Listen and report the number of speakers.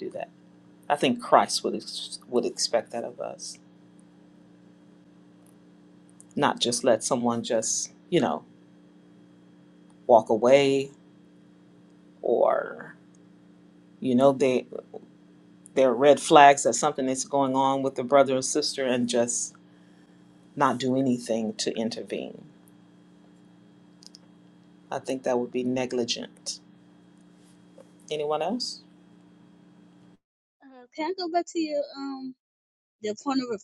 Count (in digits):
2